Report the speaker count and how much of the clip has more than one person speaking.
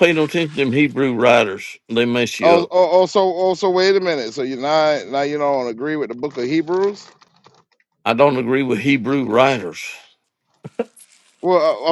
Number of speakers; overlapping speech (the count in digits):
2, about 2%